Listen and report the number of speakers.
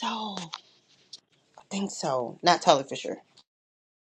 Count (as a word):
one